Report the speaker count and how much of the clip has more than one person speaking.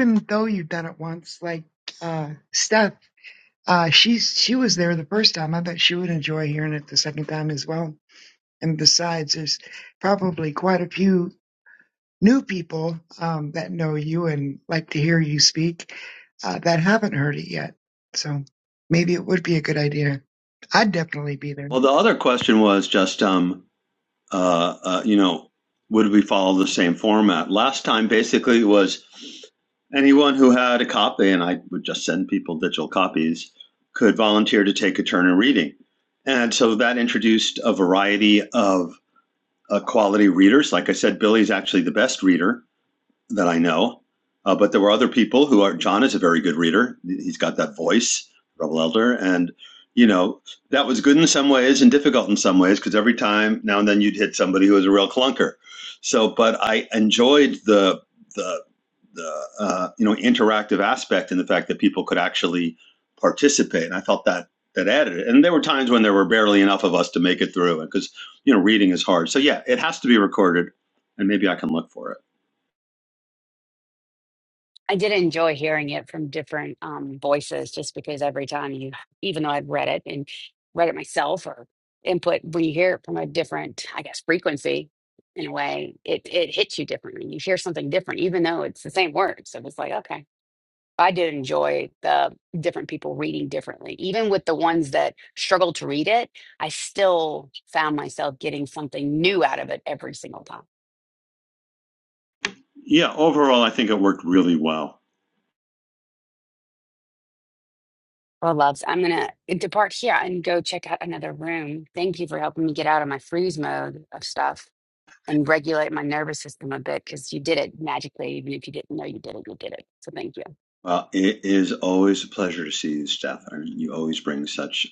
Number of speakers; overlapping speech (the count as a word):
three, under 1%